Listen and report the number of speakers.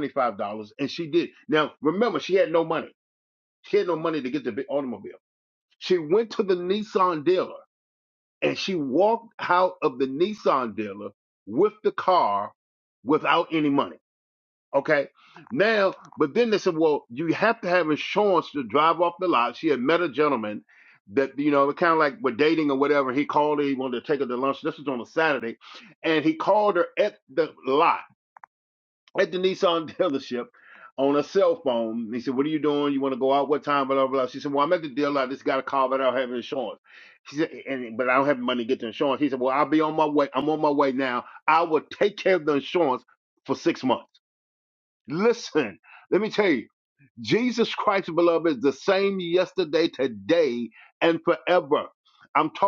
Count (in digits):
1